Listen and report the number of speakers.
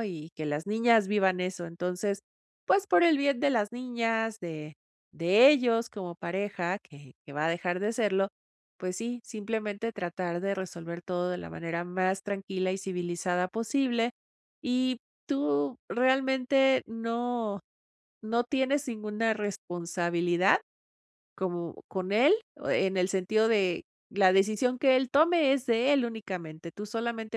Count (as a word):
one